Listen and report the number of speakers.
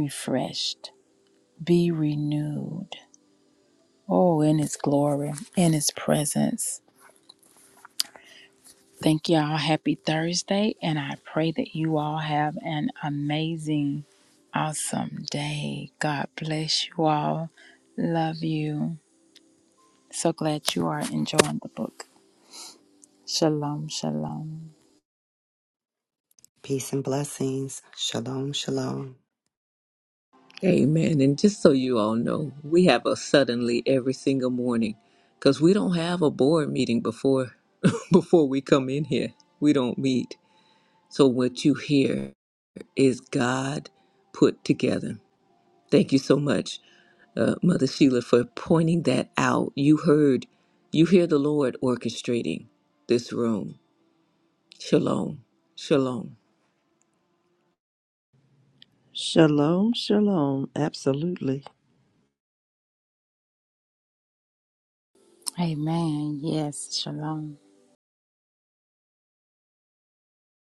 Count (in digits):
4